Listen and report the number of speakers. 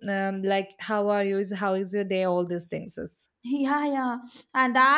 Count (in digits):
2